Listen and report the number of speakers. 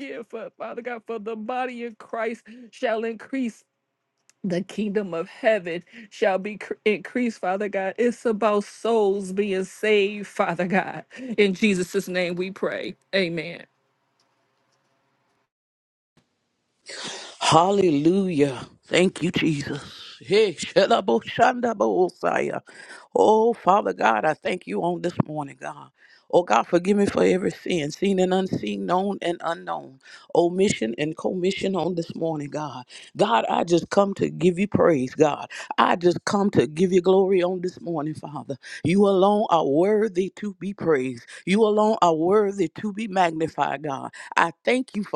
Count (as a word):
two